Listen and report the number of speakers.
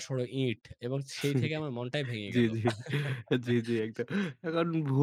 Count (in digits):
2